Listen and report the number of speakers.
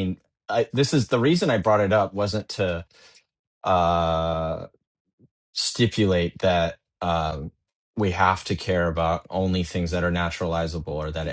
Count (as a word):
one